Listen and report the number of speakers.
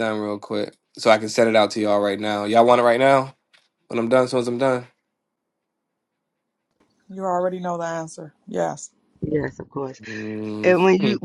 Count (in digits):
3